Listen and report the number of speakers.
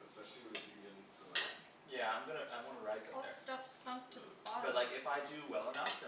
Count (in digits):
3